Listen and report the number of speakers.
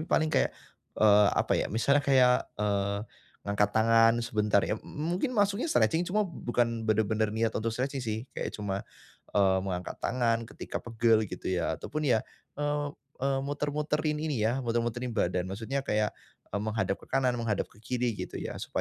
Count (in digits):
1